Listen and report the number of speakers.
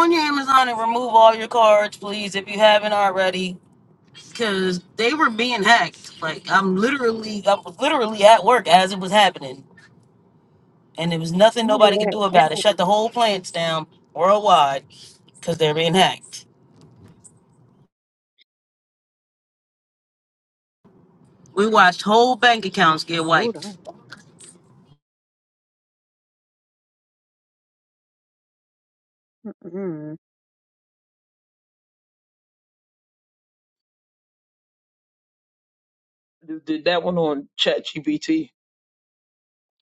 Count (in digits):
3